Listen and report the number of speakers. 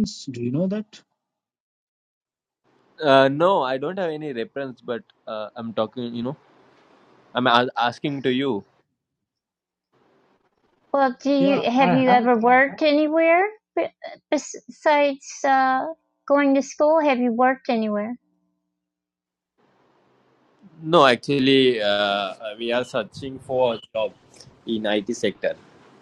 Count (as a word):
three